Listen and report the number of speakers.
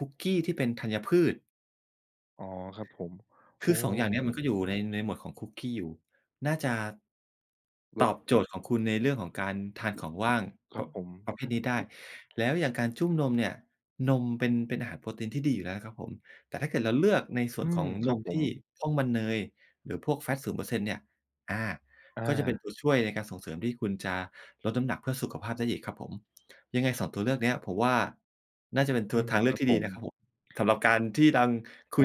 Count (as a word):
two